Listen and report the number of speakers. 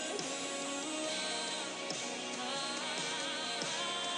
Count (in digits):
0